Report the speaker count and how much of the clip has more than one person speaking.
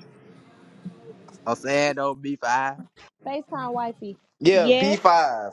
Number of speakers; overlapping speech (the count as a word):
three, about 9%